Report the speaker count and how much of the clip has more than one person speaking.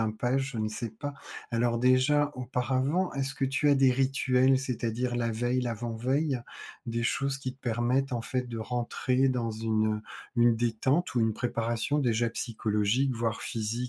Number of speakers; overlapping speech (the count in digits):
1, no overlap